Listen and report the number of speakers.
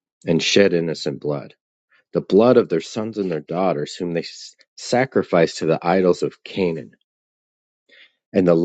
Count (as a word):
one